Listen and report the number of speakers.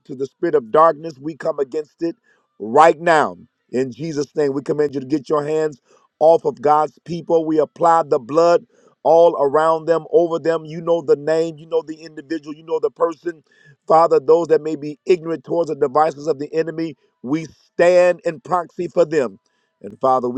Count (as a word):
one